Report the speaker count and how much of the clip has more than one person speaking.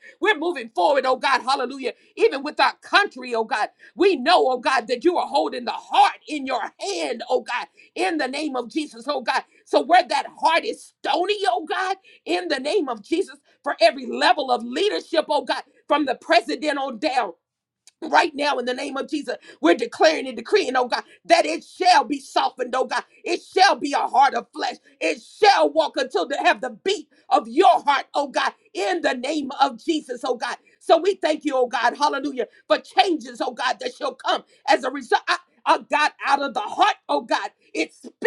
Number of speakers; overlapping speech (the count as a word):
one, no overlap